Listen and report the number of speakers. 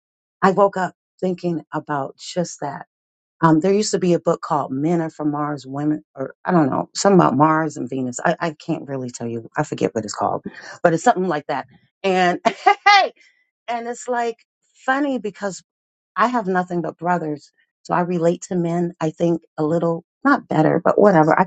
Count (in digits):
1